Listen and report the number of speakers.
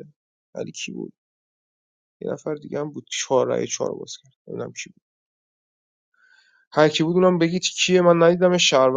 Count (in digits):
1